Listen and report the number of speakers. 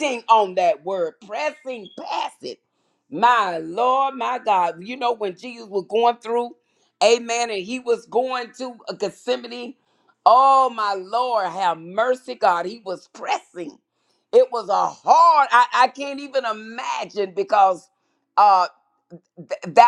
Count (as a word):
one